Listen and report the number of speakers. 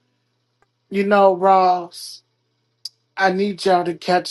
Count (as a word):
one